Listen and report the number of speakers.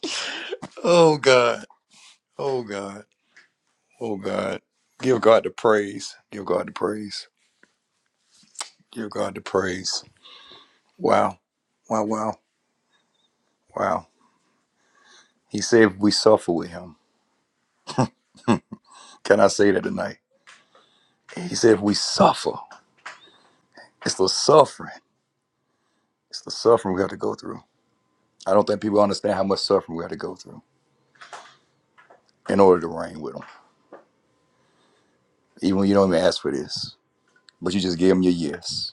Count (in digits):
1